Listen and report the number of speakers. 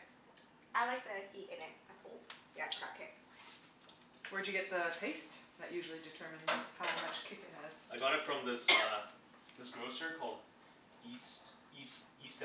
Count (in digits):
3